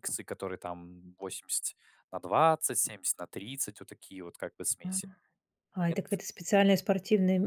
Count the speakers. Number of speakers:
two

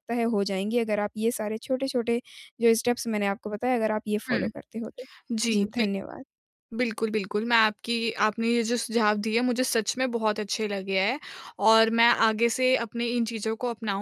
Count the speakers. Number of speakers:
two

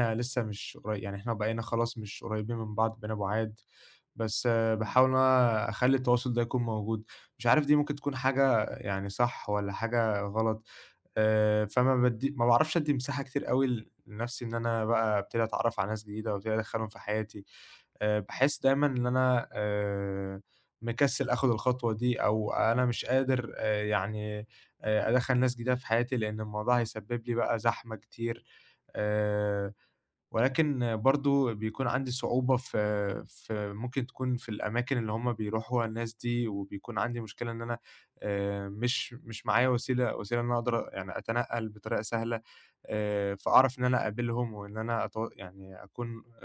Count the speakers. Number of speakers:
one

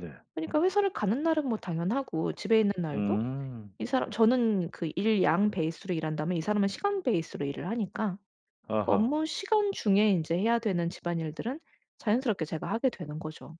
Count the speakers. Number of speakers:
two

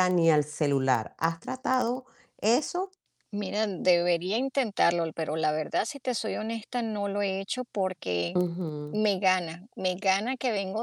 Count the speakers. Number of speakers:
two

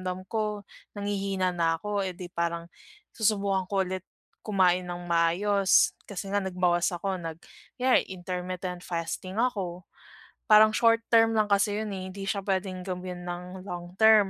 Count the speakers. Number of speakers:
one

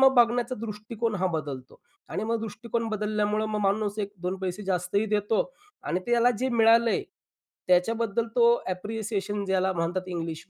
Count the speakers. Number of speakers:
one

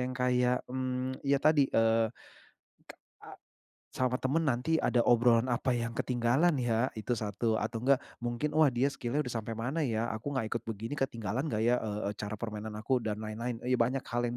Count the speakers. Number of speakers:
one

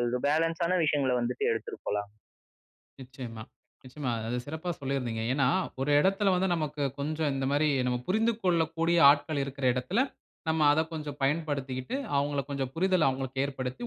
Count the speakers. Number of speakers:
two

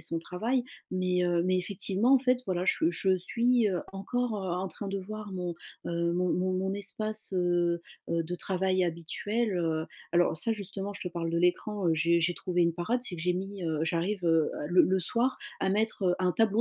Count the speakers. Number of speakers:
one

